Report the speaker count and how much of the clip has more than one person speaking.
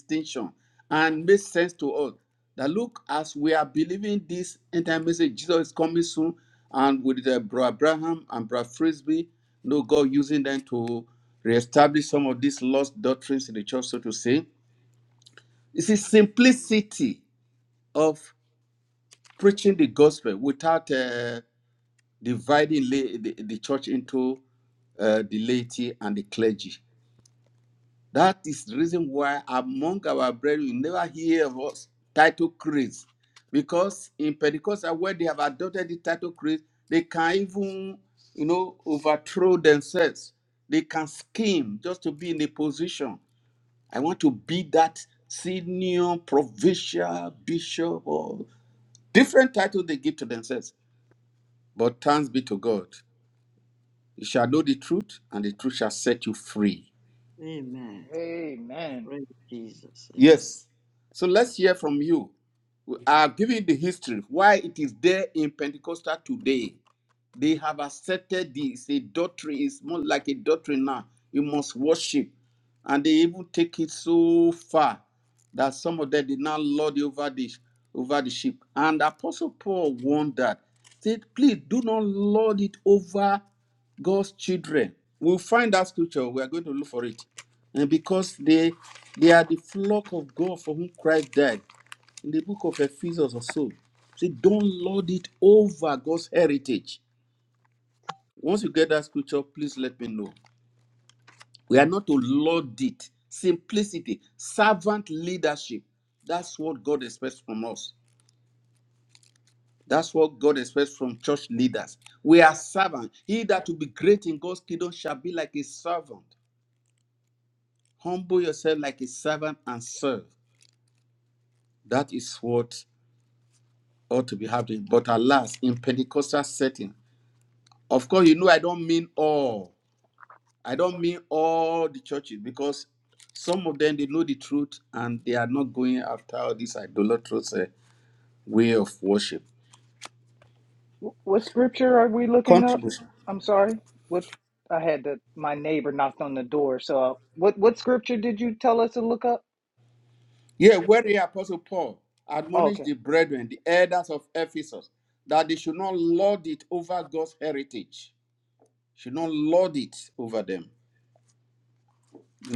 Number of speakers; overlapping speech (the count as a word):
three, about 1%